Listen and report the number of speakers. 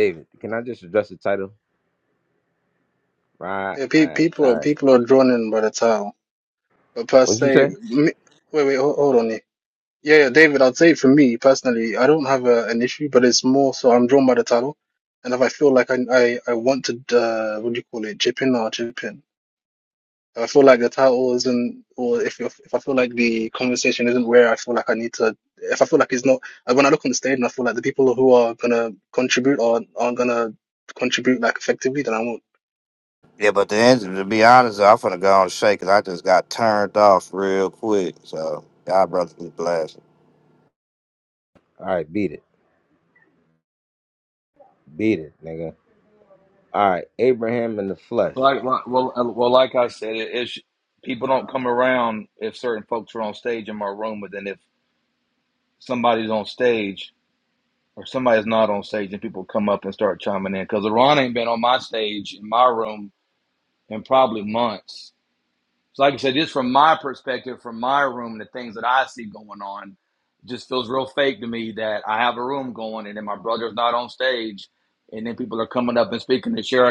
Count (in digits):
4